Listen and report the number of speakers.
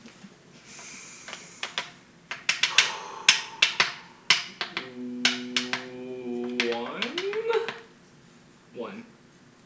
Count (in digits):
1